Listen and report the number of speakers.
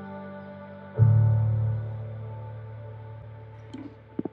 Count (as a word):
zero